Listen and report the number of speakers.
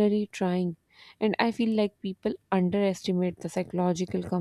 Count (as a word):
one